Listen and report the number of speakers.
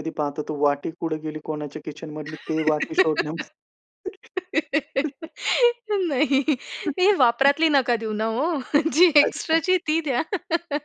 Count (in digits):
2